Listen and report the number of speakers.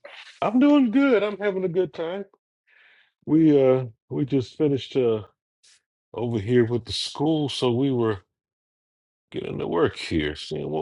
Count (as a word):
one